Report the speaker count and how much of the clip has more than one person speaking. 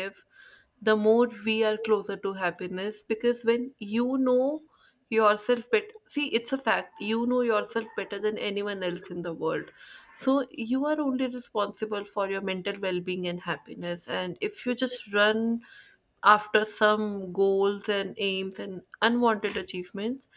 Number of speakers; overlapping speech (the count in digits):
1, no overlap